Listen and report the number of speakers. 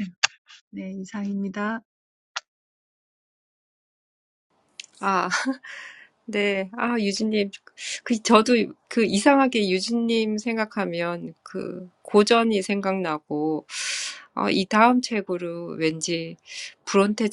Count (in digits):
2